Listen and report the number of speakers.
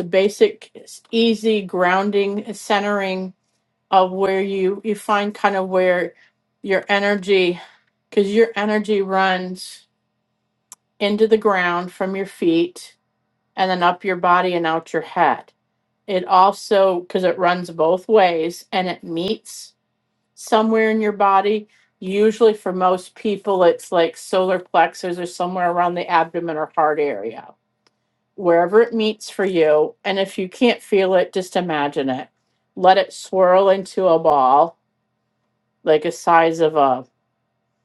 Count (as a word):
one